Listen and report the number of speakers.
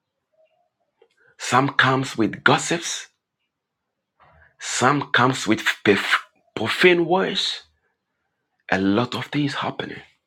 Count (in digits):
1